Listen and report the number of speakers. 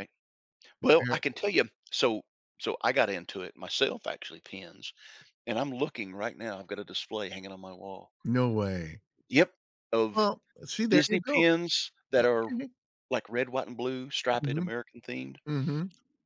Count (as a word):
two